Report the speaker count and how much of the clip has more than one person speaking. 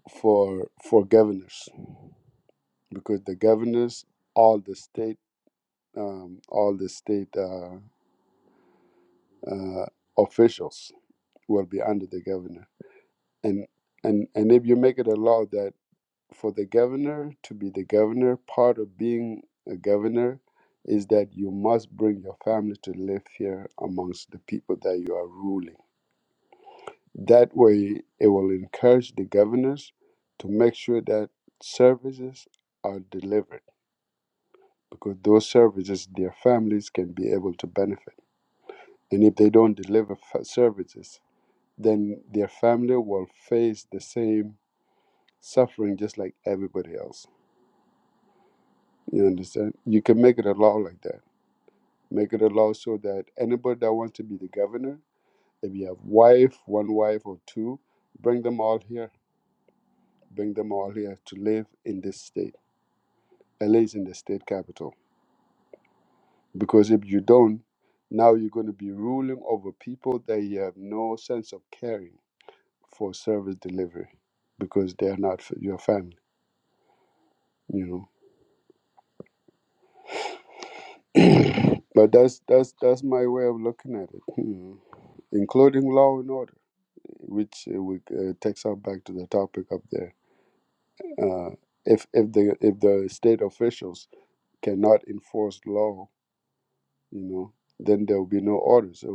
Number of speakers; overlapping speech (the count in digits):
1, no overlap